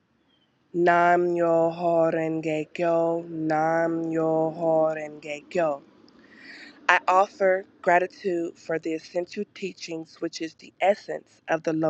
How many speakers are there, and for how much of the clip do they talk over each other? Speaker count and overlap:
one, no overlap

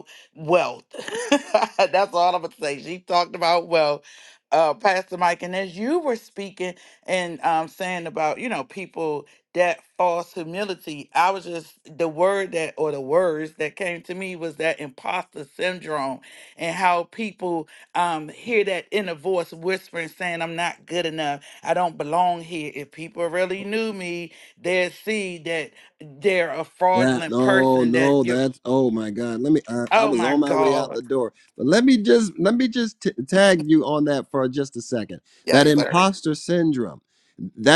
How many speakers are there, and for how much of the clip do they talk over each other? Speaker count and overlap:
two, about 8%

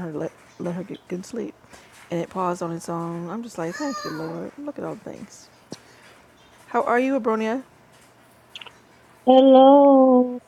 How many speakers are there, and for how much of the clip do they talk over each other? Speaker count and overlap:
two, no overlap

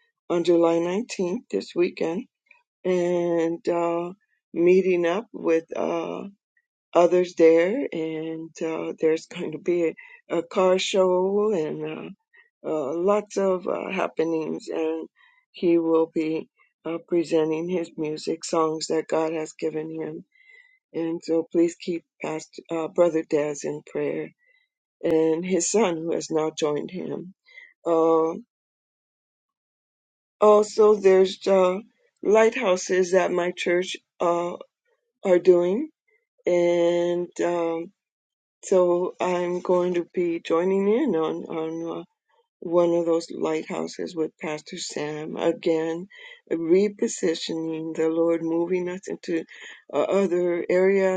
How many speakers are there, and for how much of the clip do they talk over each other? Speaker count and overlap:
one, no overlap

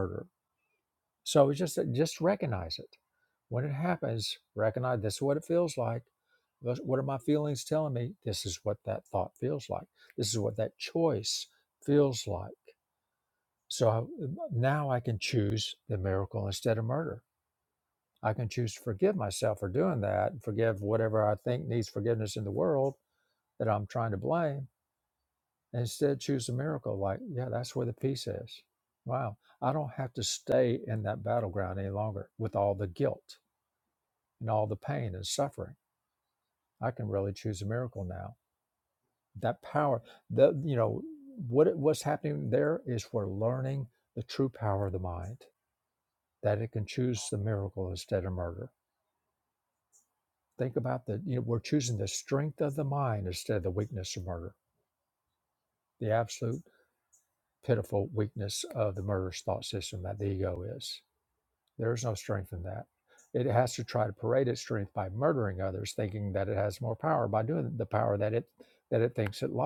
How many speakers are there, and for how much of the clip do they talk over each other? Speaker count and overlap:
one, no overlap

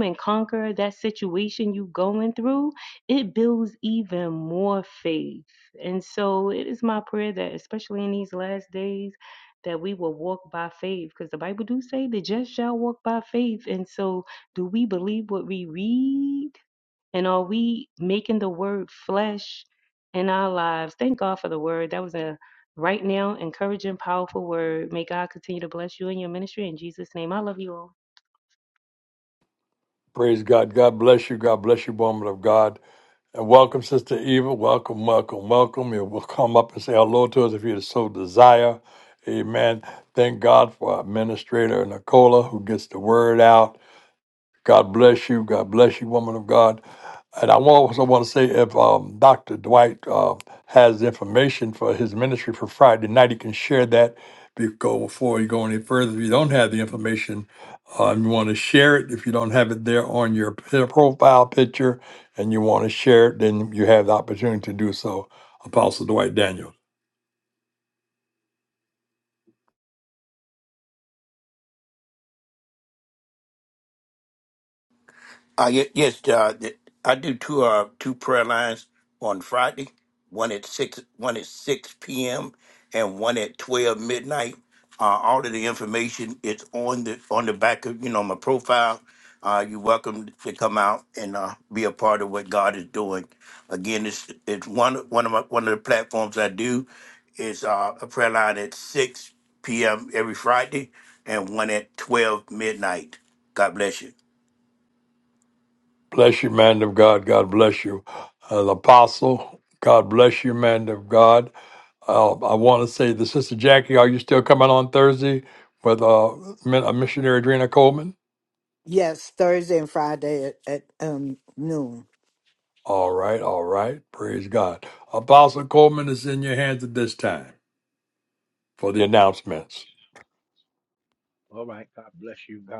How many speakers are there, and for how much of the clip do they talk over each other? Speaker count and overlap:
five, no overlap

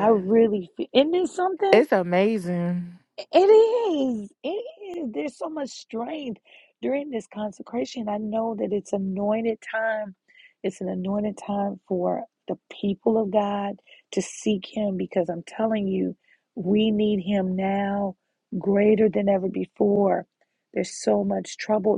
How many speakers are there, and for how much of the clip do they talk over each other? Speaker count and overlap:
two, about 2%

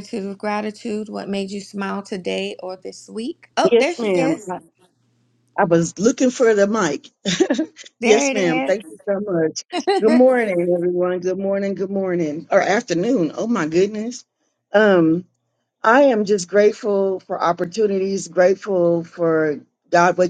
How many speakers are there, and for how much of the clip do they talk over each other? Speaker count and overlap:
two, about 8%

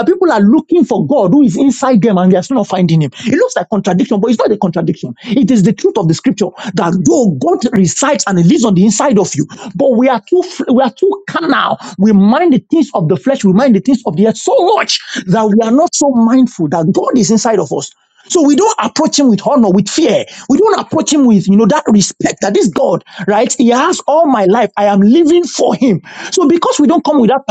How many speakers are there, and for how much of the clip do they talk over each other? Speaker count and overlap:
one, no overlap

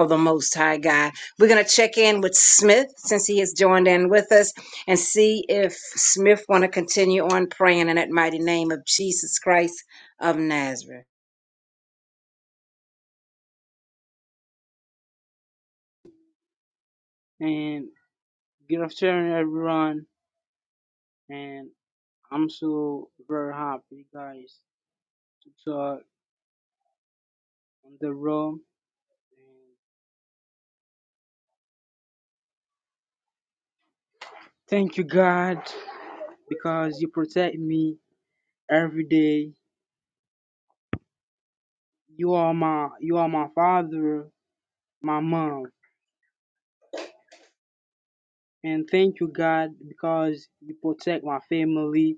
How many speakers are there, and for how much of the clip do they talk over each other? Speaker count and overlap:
two, no overlap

